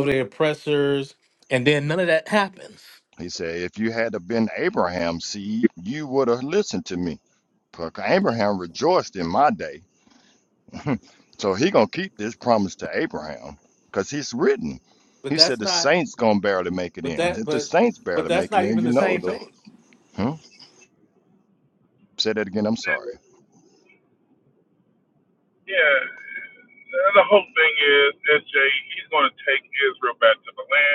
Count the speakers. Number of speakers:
3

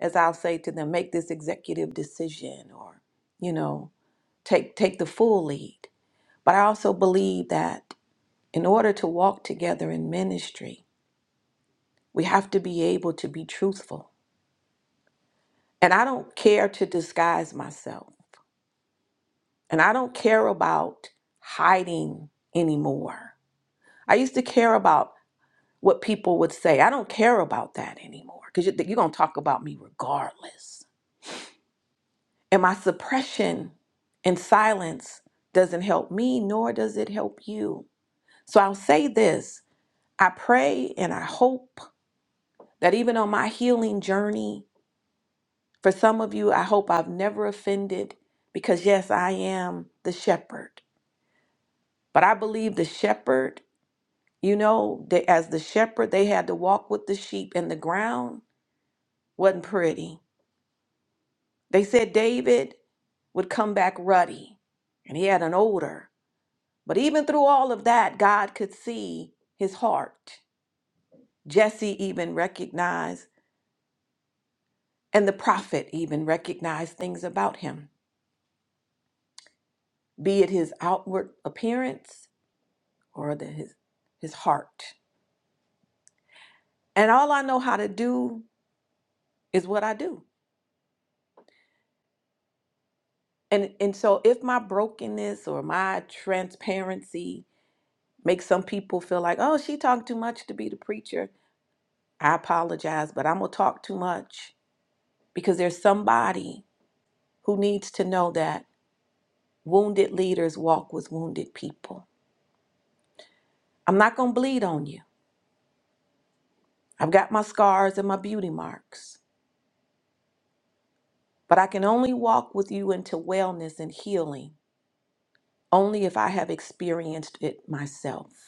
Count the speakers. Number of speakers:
1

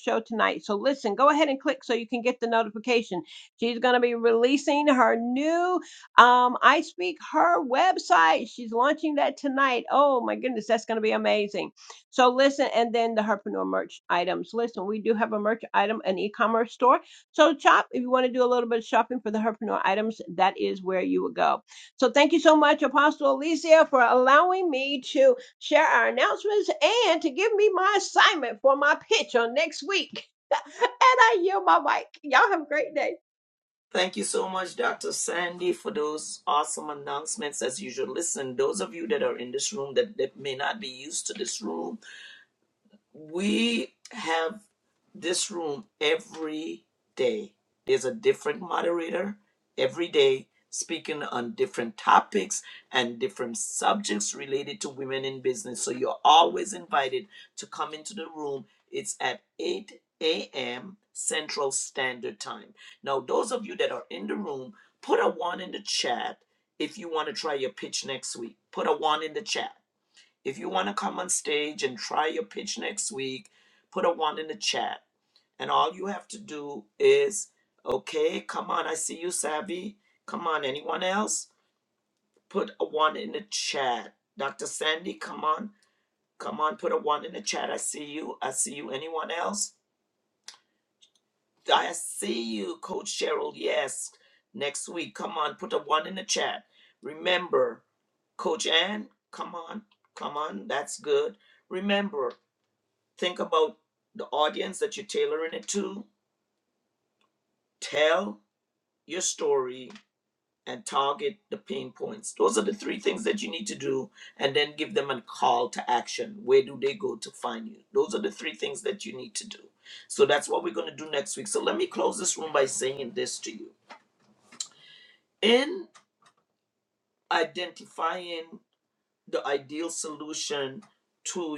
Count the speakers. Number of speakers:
2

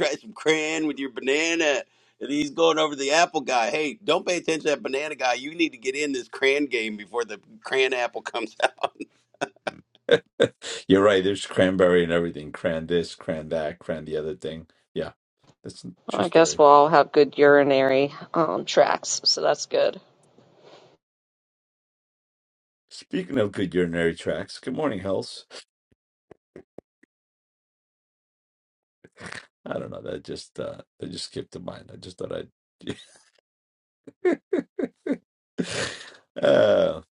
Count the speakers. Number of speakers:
3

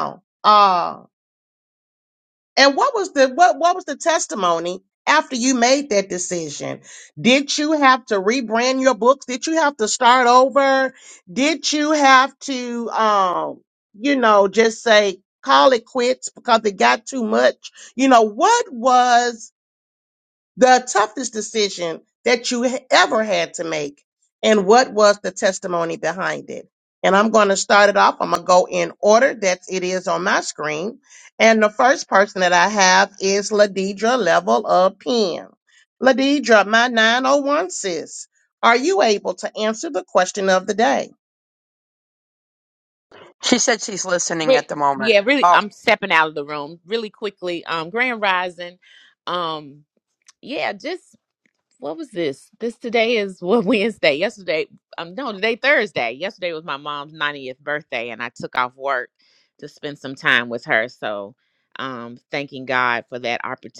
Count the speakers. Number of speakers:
3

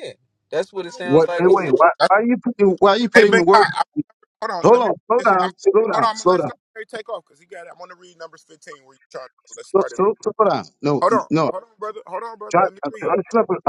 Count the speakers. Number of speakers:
3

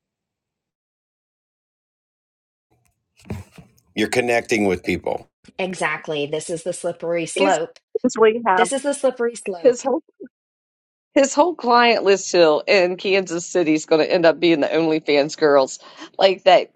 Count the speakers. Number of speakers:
3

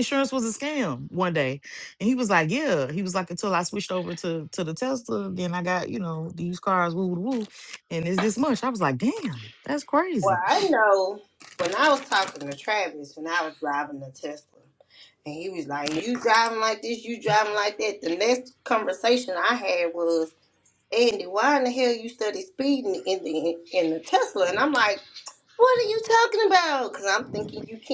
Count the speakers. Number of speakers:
2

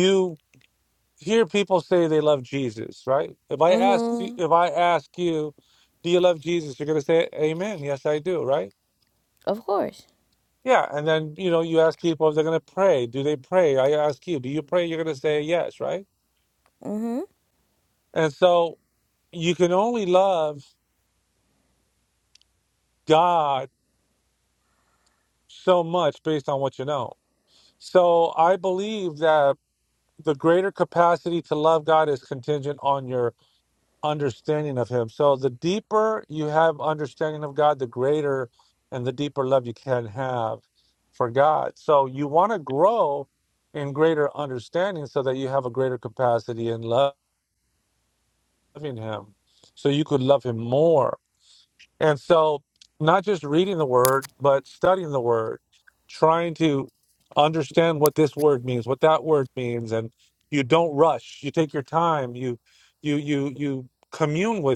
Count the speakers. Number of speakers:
2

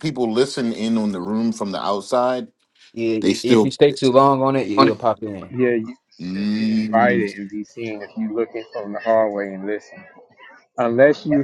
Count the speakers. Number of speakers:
3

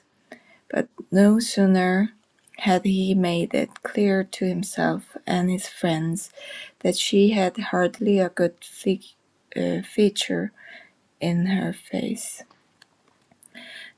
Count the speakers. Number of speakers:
1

